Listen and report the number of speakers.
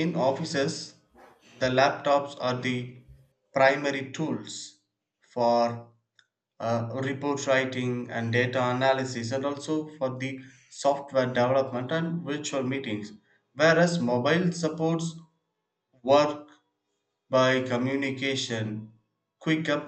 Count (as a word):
one